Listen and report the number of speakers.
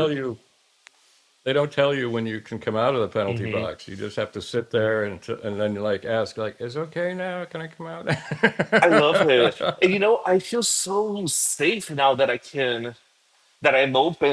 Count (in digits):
2